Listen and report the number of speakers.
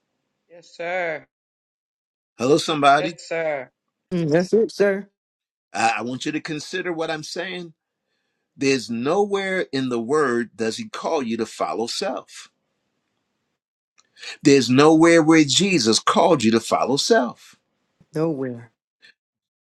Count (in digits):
3